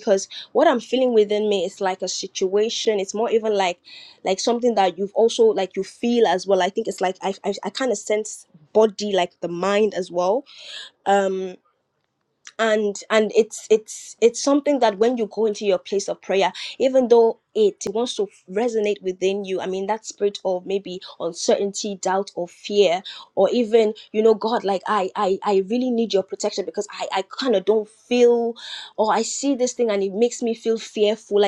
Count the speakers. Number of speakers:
one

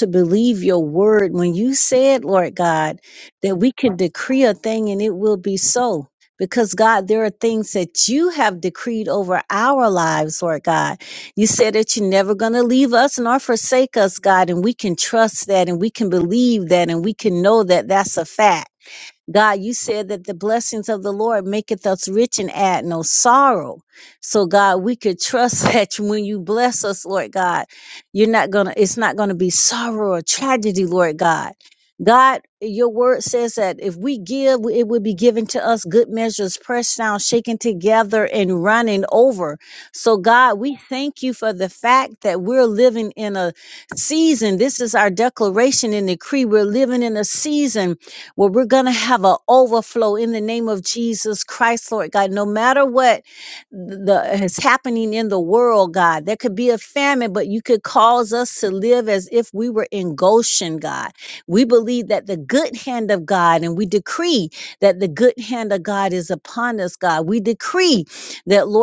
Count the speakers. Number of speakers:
one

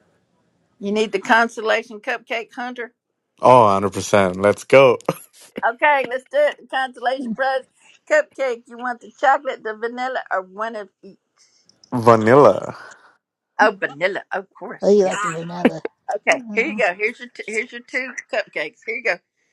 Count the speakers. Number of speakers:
three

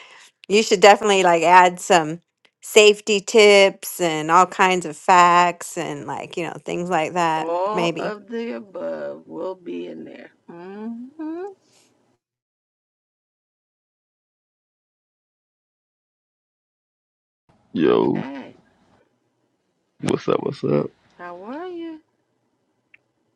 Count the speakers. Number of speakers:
three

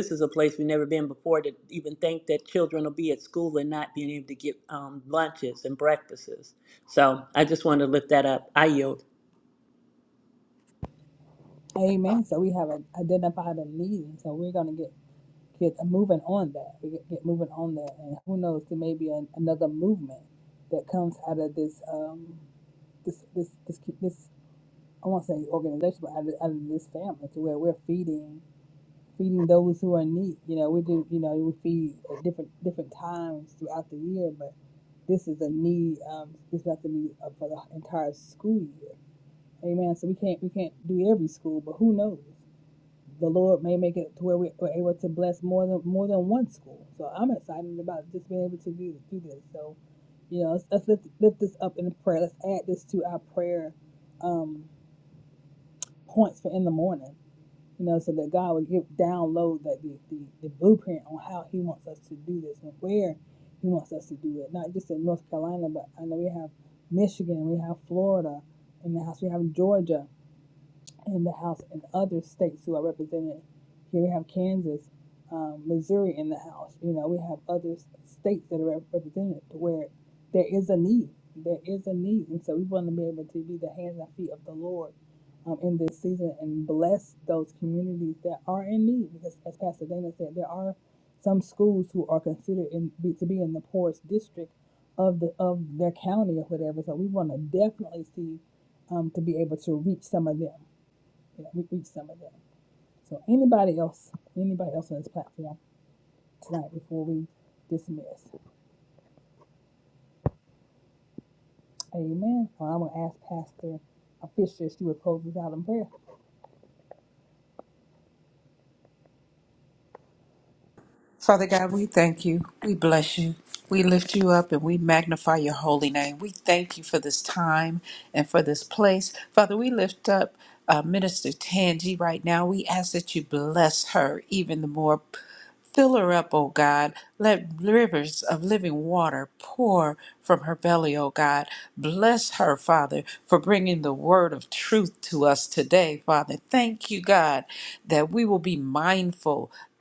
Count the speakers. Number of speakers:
three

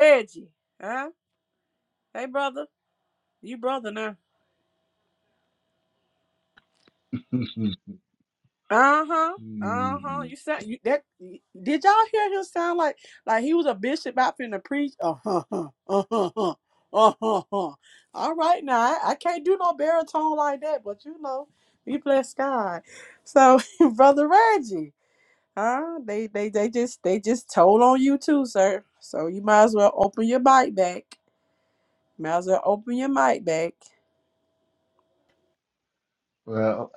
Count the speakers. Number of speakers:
two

